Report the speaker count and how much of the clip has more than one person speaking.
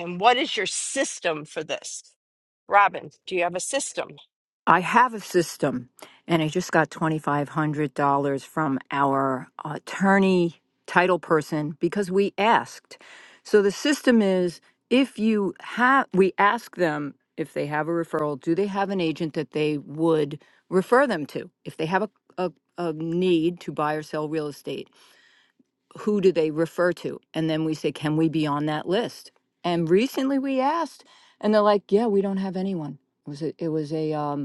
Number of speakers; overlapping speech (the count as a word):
two, no overlap